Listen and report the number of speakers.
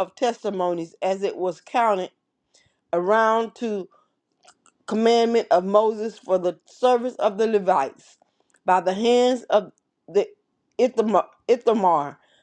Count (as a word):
one